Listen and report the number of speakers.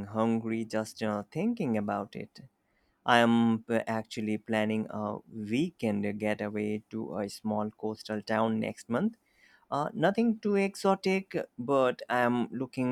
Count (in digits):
1